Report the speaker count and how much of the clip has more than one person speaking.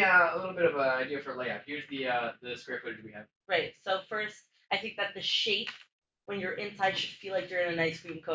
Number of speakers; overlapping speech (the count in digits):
2, no overlap